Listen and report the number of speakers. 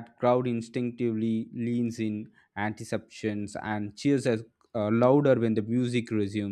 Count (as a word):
one